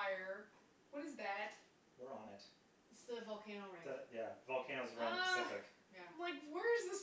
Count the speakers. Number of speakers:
three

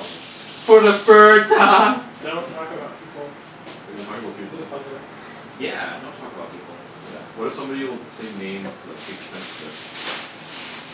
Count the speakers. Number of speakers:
four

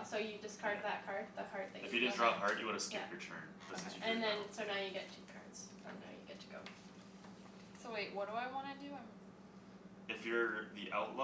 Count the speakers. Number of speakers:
three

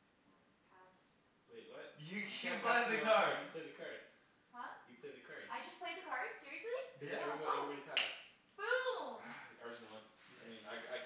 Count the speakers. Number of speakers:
three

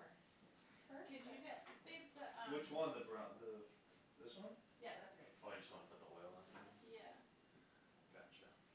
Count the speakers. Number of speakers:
four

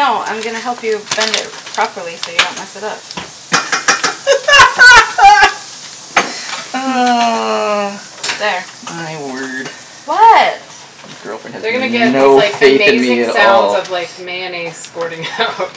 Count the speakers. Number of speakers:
three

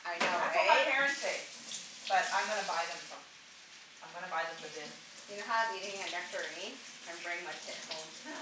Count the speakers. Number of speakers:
two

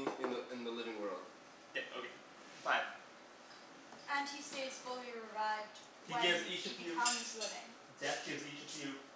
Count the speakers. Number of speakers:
three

